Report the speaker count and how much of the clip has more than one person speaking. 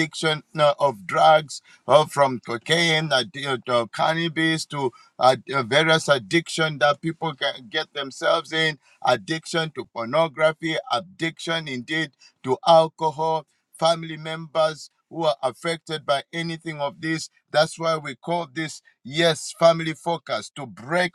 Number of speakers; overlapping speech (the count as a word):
one, no overlap